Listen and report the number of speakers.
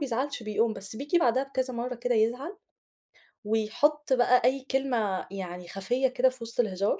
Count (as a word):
one